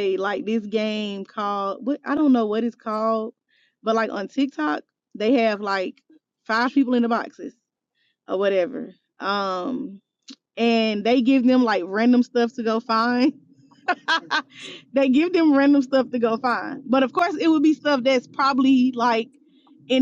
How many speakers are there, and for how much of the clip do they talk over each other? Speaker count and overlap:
1, no overlap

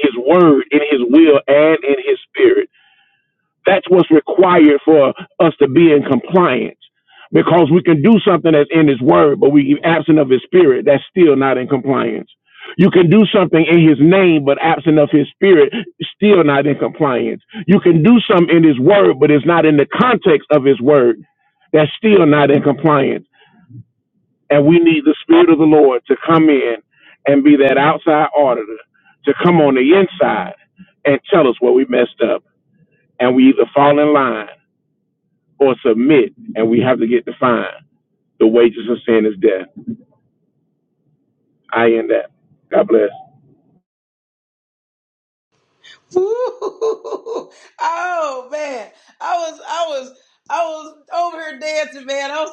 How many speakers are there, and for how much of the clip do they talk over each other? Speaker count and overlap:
2, no overlap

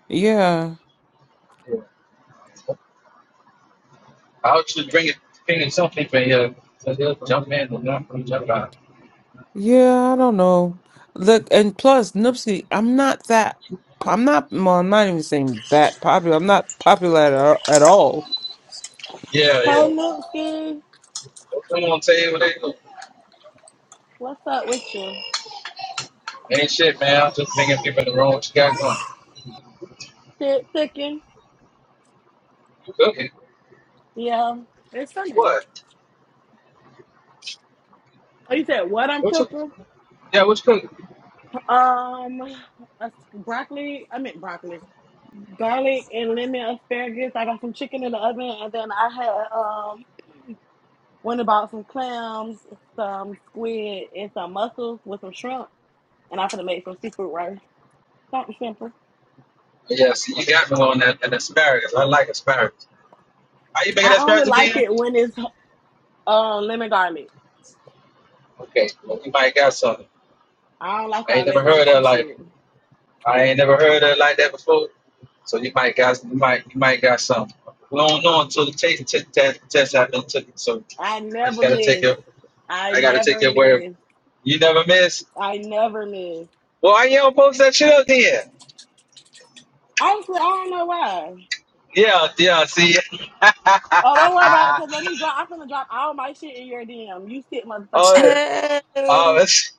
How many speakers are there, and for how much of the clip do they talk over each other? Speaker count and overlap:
4, about 5%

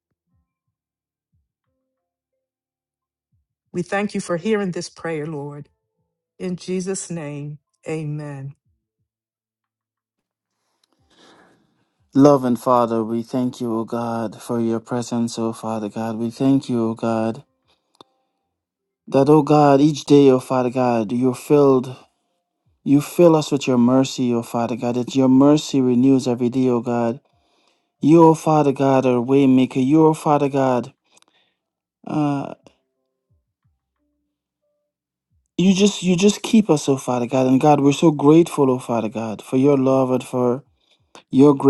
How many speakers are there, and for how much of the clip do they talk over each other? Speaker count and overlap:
2, no overlap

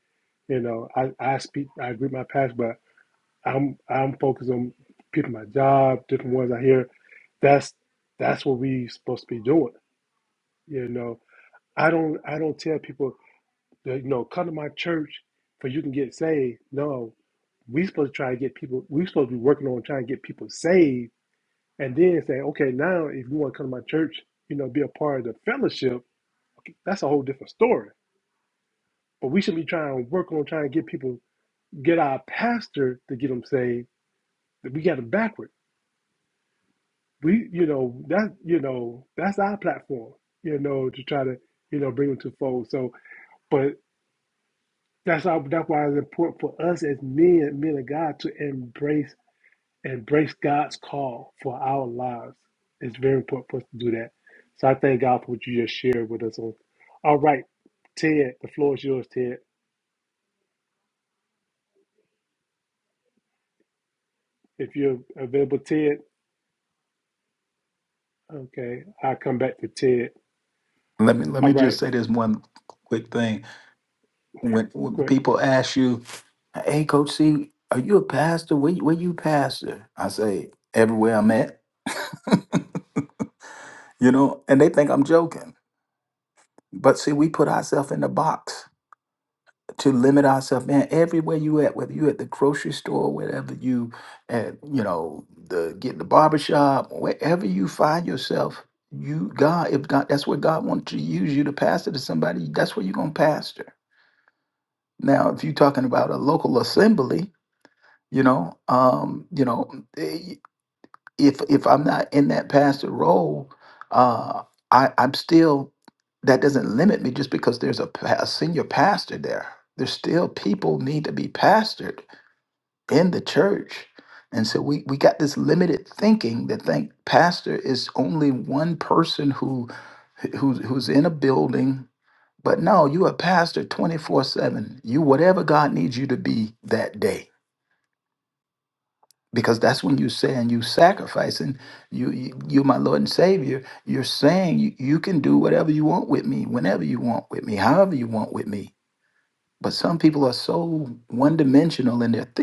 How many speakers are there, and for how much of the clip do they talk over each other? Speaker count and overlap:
2, under 1%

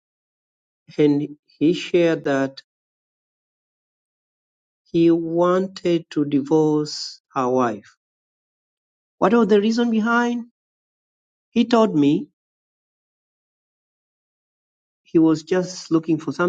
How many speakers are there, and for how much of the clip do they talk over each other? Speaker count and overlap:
1, no overlap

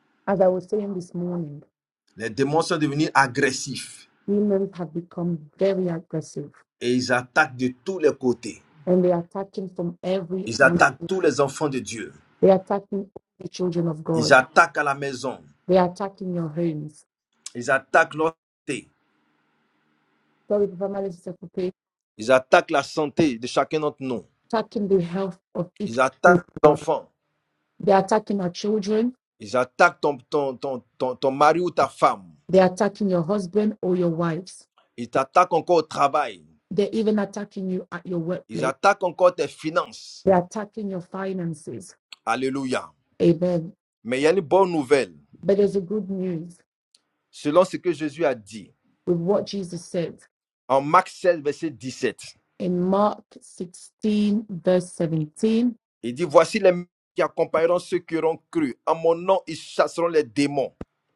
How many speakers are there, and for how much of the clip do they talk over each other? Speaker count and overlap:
2, about 3%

